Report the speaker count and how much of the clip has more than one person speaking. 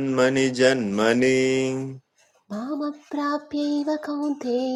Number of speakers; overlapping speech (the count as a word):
two, no overlap